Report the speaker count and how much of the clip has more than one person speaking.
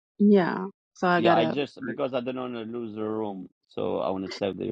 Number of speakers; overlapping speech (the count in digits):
2, about 7%